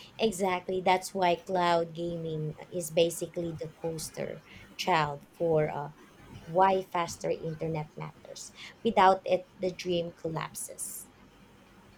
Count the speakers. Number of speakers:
one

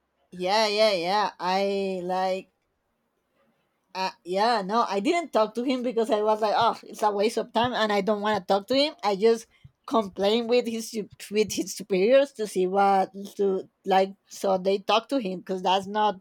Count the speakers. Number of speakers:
one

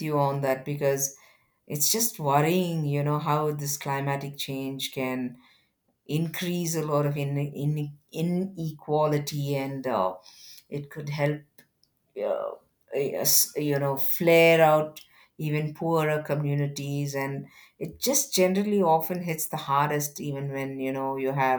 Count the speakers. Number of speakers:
one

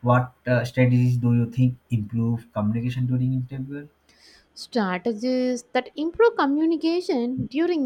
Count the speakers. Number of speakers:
two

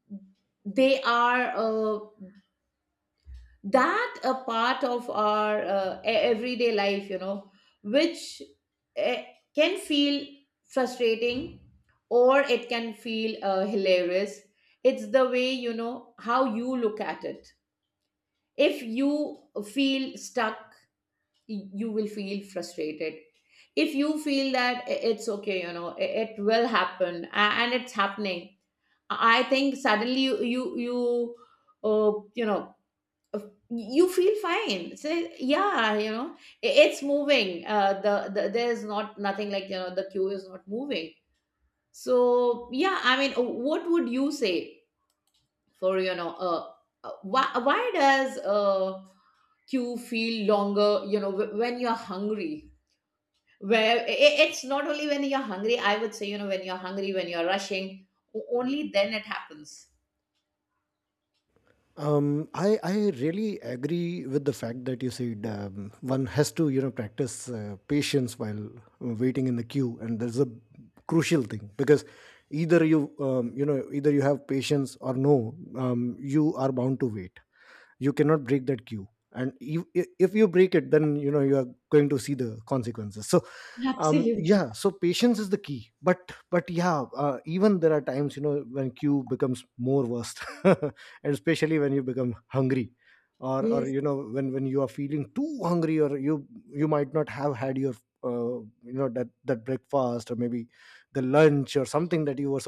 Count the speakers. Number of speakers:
two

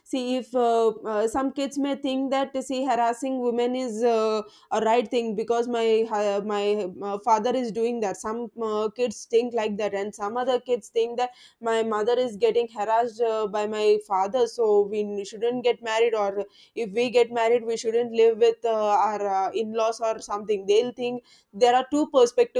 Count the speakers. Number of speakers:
one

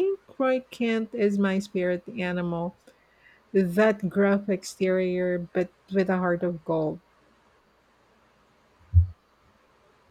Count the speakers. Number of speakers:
one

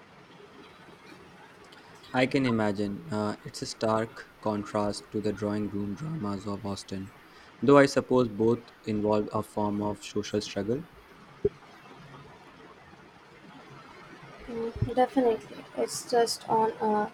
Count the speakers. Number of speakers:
two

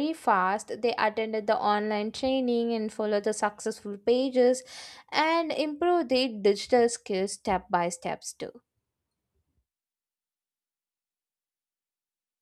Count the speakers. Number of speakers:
one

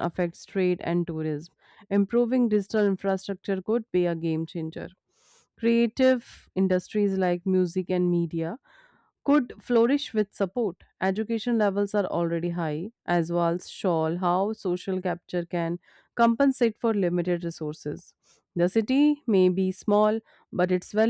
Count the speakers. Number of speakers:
one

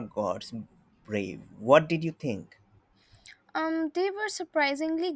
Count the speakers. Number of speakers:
two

